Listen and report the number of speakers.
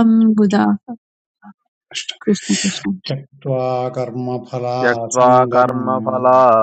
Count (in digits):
3